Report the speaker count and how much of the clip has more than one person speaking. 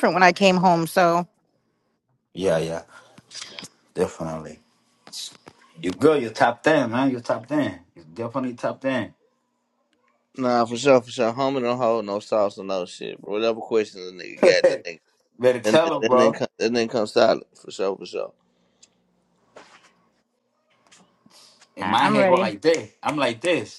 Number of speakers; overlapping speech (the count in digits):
3, about 6%